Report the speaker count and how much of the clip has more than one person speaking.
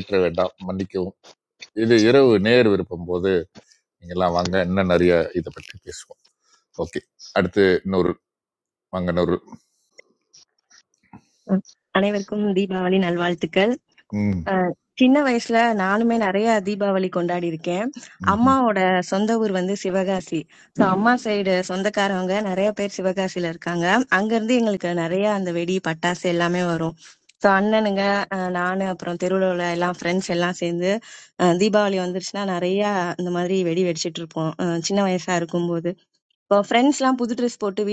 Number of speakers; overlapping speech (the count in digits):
2, about 1%